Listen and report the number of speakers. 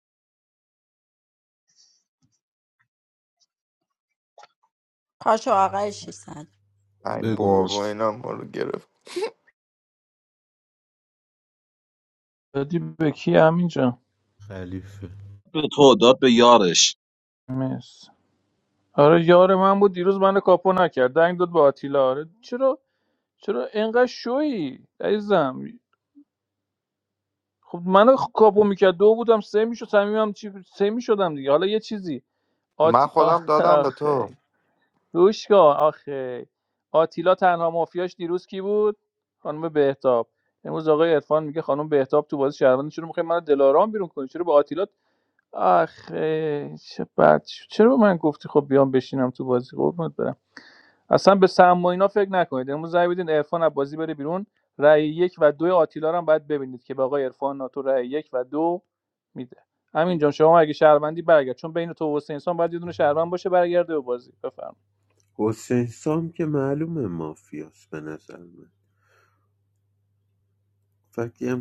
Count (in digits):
5